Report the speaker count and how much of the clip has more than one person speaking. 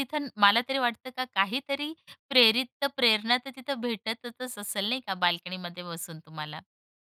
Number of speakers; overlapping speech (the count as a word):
one, no overlap